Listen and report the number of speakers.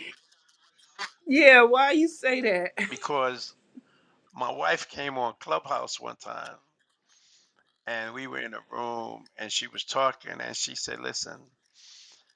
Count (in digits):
2